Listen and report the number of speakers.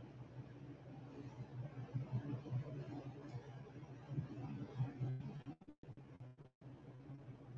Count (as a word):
zero